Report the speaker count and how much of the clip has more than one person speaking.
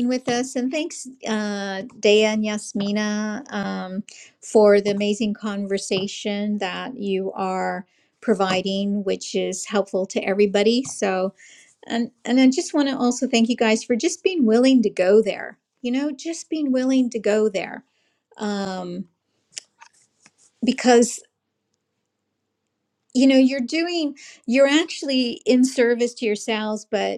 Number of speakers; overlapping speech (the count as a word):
one, no overlap